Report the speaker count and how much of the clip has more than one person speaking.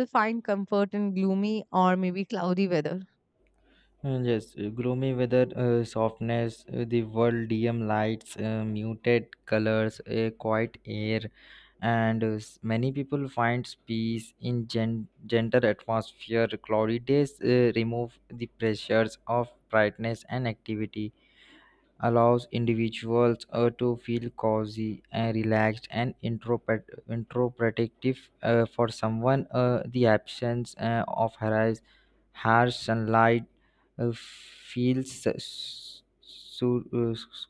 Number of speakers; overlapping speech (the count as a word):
two, no overlap